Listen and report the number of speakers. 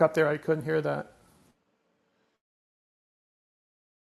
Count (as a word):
one